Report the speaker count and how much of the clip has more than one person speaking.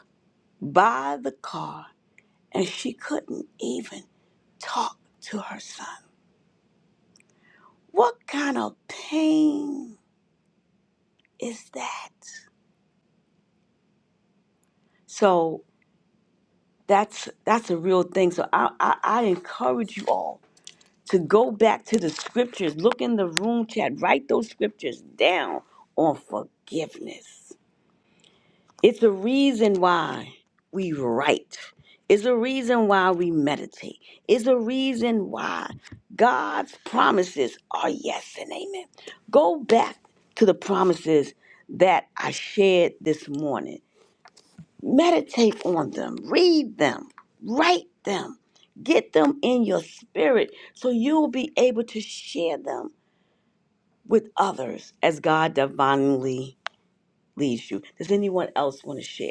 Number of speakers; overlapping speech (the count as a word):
one, no overlap